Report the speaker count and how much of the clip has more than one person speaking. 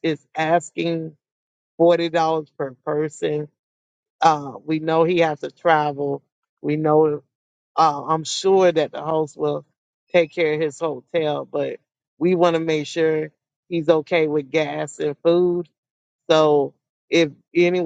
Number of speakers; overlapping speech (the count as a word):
one, no overlap